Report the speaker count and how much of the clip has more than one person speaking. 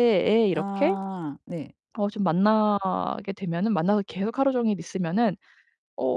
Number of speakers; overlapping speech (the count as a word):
two, about 8%